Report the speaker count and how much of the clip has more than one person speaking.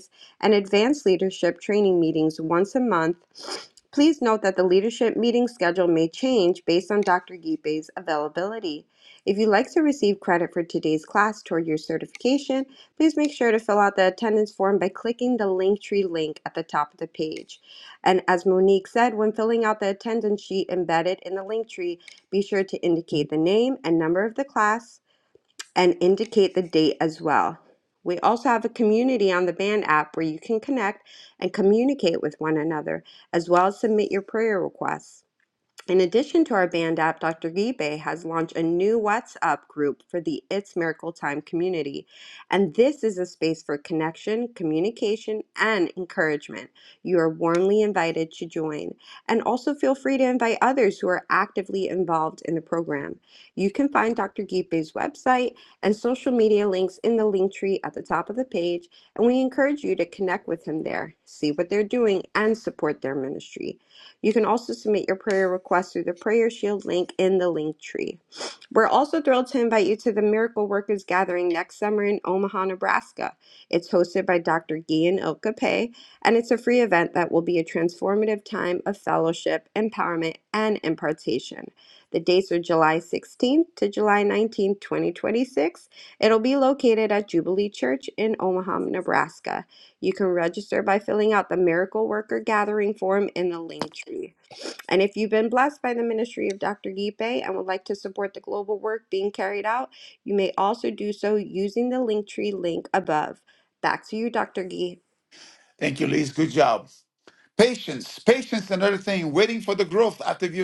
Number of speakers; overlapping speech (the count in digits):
2, no overlap